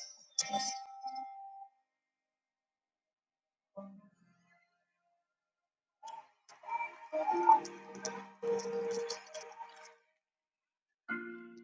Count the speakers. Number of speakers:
zero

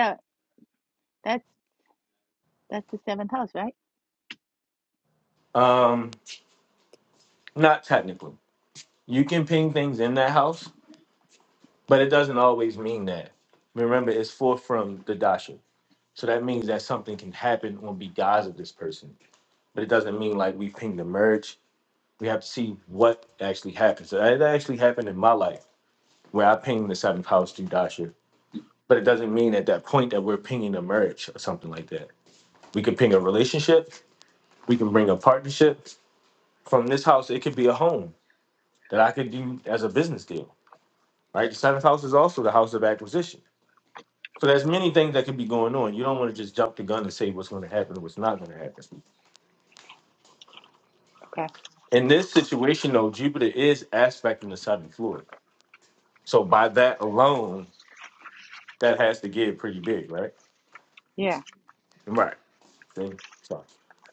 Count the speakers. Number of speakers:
two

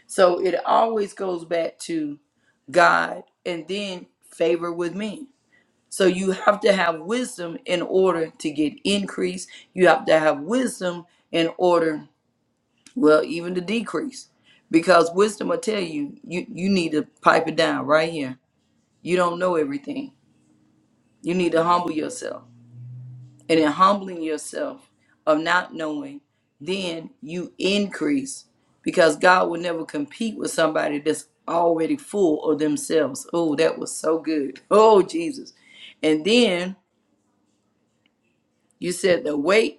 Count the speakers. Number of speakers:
one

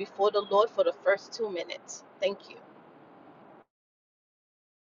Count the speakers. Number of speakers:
one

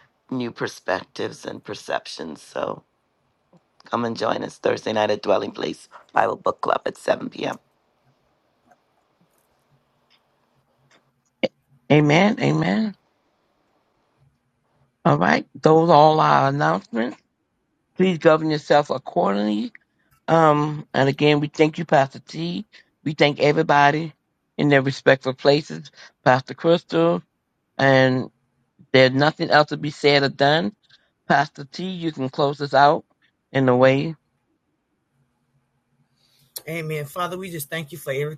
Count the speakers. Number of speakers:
three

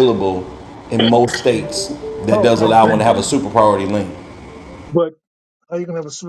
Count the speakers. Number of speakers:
two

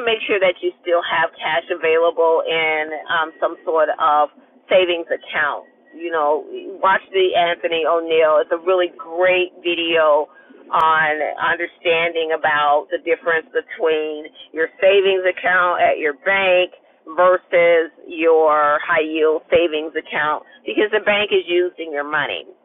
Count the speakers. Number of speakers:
one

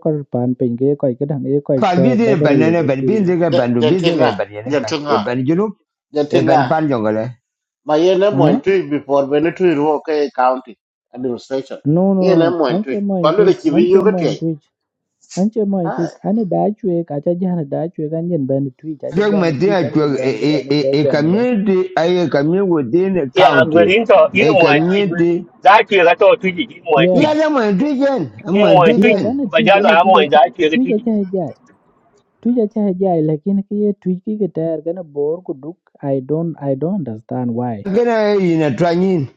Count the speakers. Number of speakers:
four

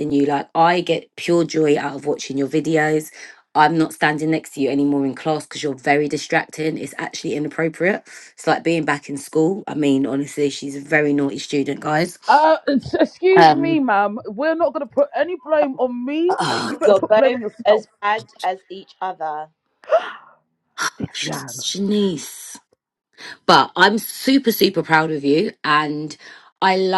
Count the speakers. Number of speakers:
three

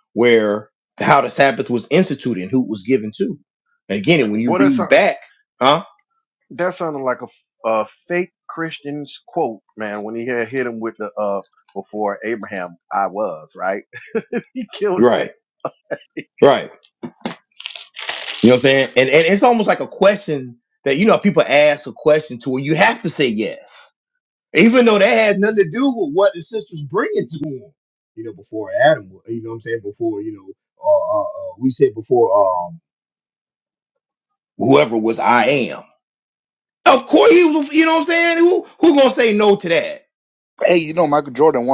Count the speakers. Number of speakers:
three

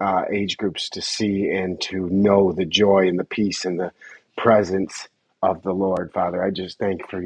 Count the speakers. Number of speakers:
one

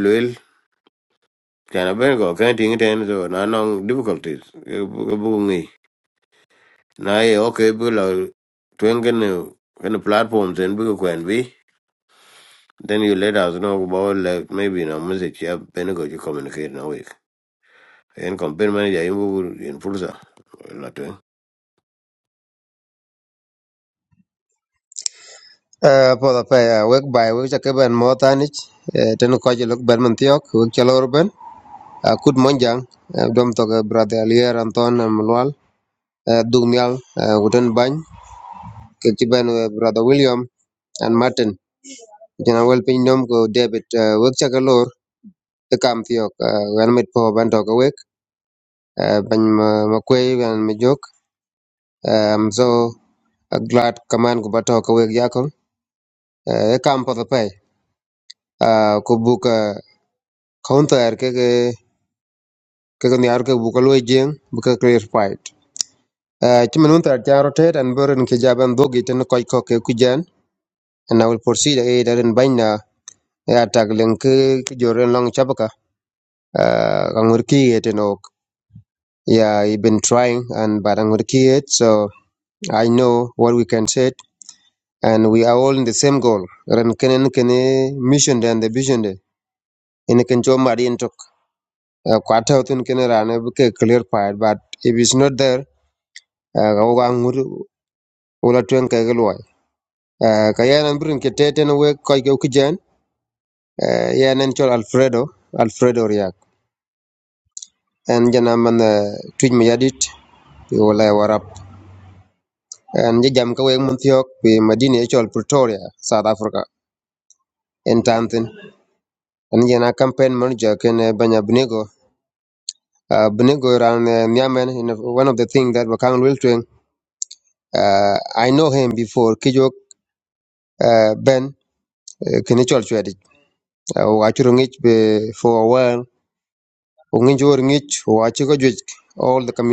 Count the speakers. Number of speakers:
two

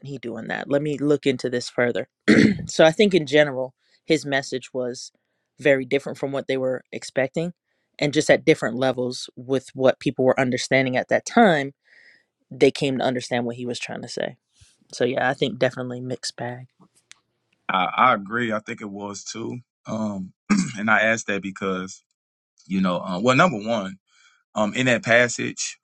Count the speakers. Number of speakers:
two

